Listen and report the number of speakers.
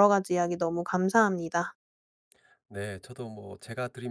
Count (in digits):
2